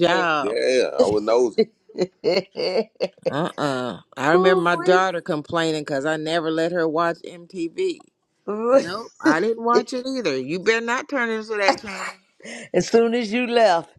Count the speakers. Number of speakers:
3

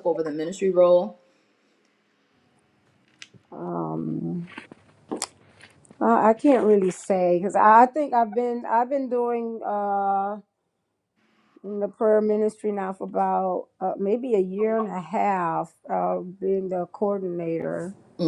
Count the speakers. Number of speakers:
2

